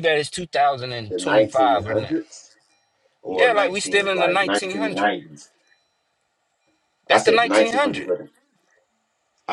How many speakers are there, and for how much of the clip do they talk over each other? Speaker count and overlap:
2, about 35%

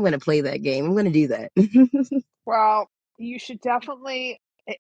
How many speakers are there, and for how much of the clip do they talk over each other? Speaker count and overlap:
2, no overlap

